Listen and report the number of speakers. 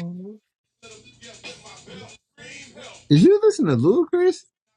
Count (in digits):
1